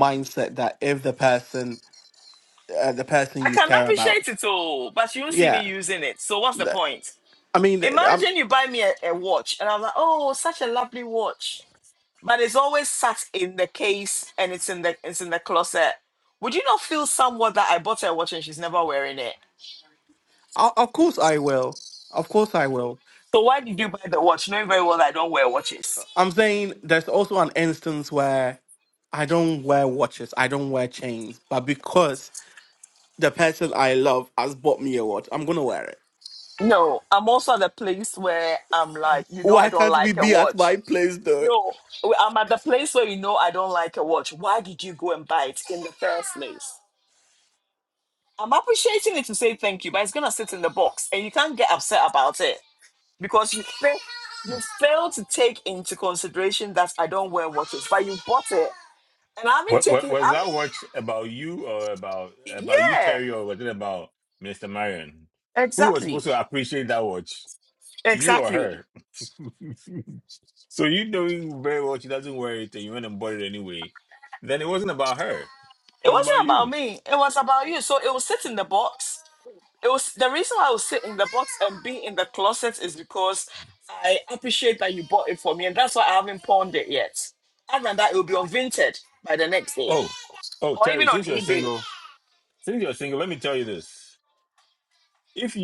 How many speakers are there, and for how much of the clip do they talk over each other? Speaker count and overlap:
3, about 8%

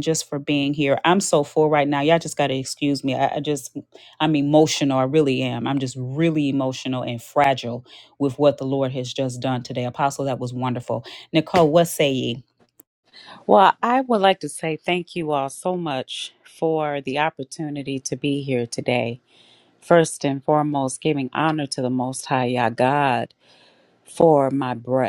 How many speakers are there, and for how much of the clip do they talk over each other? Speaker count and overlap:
2, no overlap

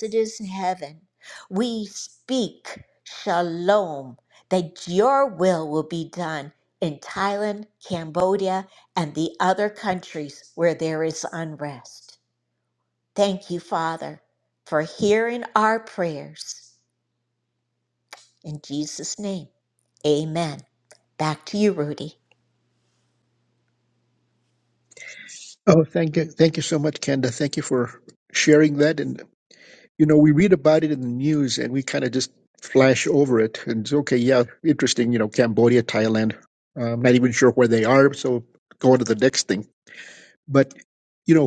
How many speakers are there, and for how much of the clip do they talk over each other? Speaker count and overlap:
2, no overlap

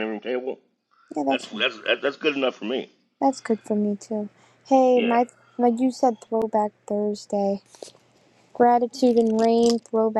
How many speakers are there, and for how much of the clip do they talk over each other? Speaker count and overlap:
2, about 6%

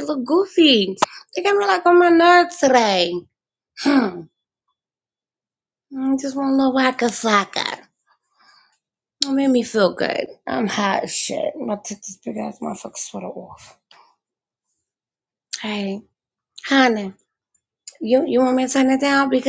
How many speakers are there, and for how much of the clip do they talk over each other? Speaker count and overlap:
1, no overlap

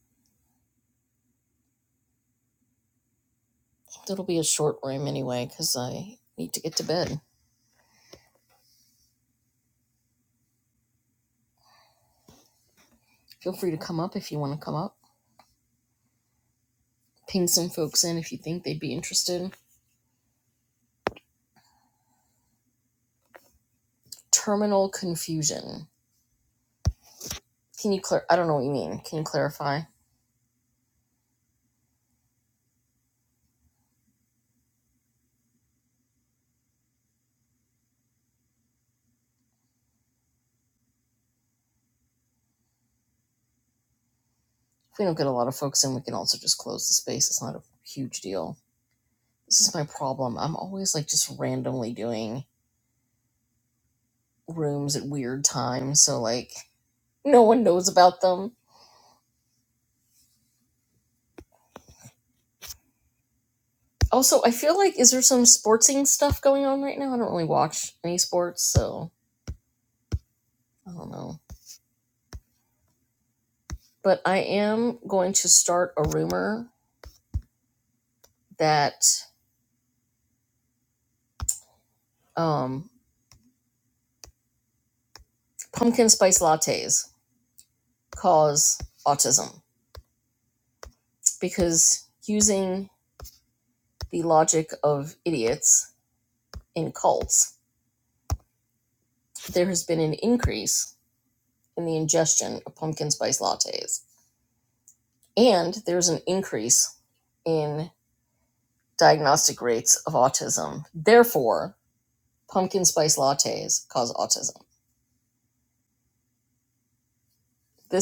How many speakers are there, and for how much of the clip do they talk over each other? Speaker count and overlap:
1, no overlap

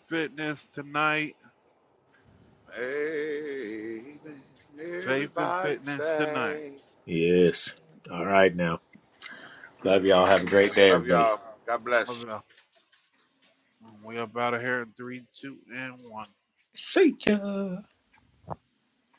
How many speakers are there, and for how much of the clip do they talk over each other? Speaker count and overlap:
3, about 14%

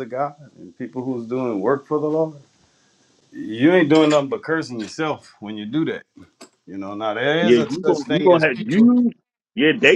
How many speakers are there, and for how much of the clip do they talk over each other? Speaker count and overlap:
2, about 15%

